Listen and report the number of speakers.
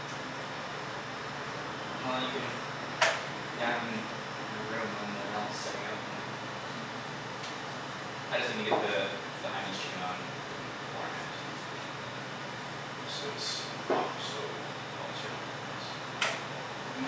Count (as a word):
one